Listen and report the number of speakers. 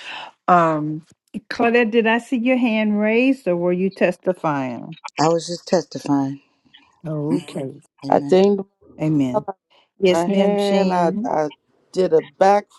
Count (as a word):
three